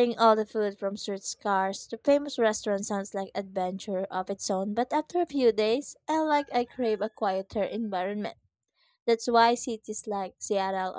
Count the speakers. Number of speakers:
1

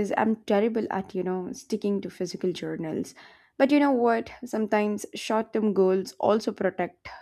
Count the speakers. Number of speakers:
1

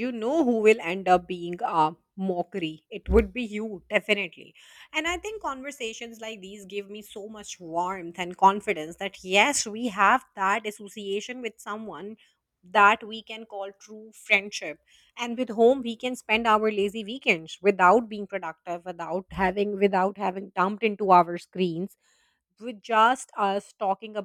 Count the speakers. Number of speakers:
1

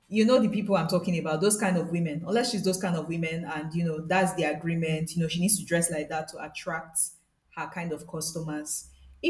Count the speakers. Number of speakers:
1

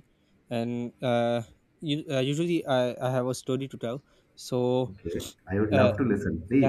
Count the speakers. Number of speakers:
2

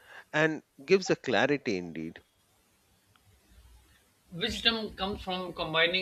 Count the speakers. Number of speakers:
2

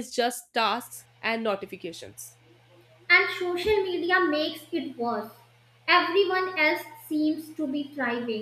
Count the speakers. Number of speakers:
2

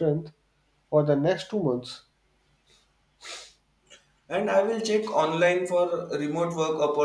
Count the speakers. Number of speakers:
2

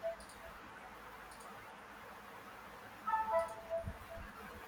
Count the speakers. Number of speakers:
0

